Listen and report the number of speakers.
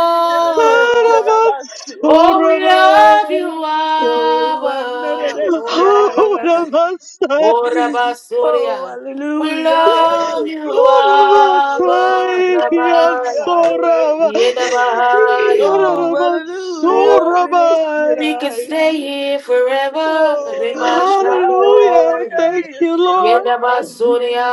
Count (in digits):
3